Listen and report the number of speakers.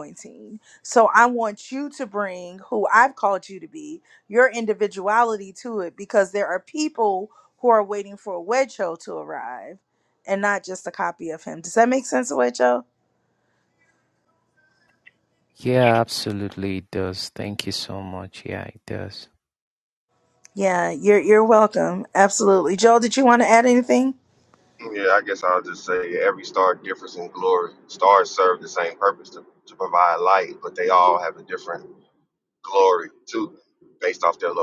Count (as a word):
three